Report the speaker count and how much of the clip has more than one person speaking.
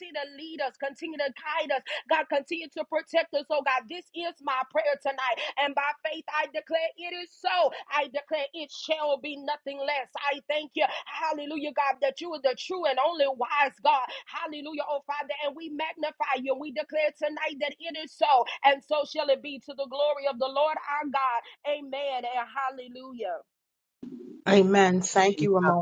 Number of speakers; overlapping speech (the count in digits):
2, no overlap